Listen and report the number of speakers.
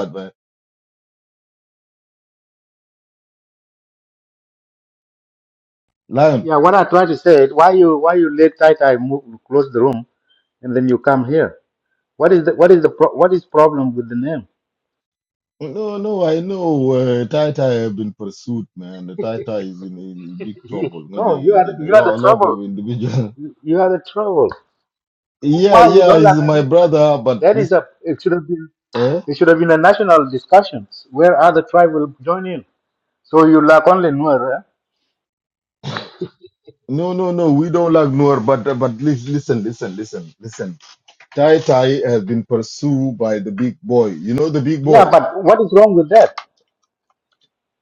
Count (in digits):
2